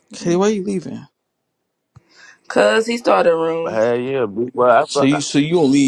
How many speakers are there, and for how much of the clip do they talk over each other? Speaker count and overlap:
three, about 6%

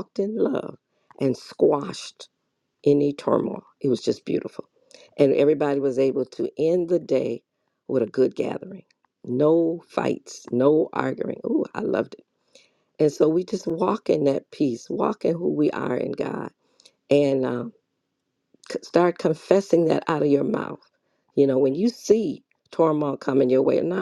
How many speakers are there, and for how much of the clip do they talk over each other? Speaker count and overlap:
one, no overlap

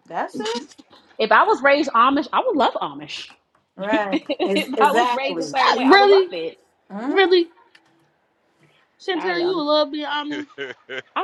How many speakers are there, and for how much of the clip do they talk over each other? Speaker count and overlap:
three, about 27%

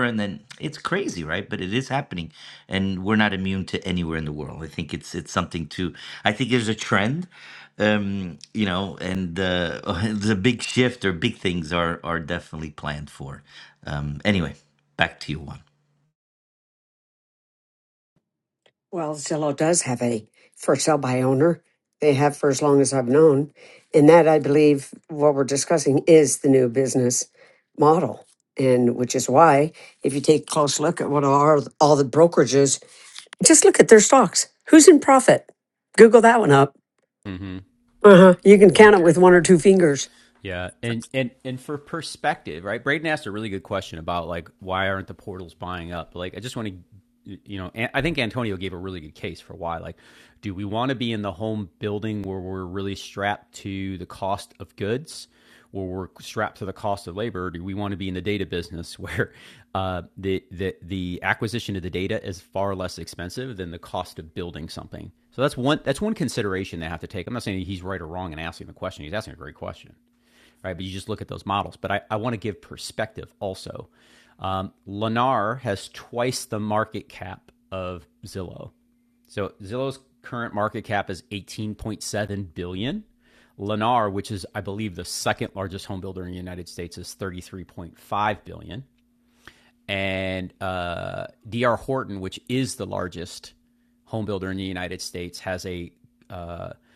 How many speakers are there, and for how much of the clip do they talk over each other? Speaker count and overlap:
three, under 1%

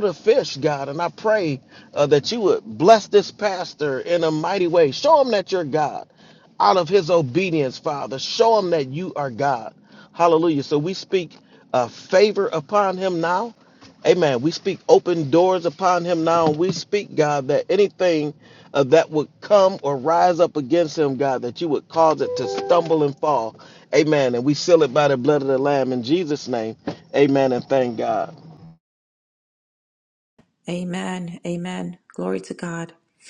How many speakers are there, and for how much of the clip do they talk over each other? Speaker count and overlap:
two, no overlap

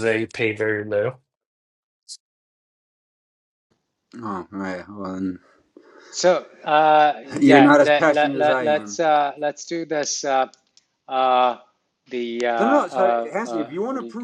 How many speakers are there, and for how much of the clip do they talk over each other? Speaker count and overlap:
three, about 22%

